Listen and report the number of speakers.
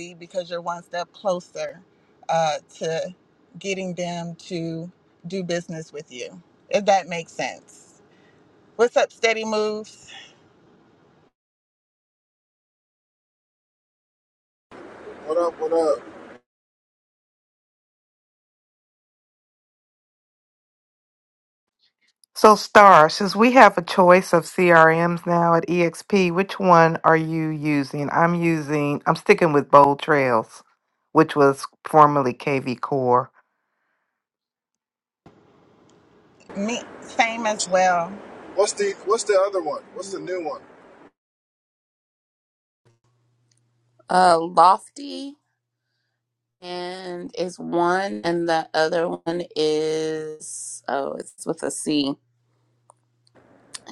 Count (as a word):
four